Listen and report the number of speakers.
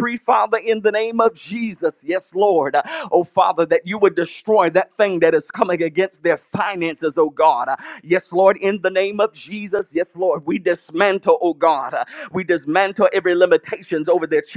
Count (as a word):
one